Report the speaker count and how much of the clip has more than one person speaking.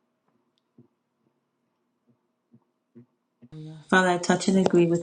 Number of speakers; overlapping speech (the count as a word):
one, no overlap